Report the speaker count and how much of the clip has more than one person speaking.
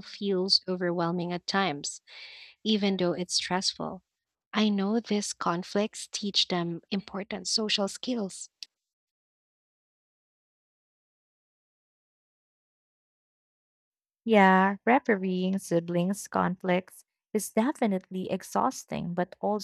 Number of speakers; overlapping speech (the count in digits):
2, no overlap